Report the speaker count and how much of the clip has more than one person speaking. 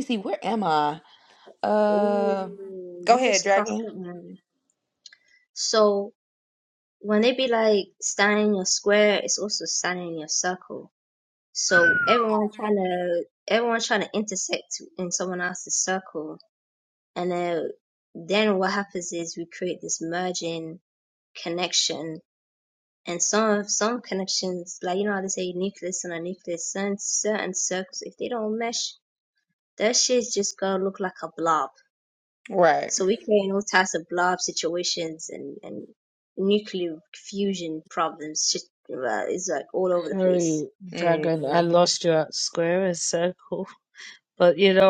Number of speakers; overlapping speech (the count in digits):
3, about 5%